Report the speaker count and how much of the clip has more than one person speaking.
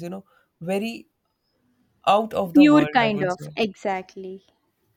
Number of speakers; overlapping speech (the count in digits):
2, about 19%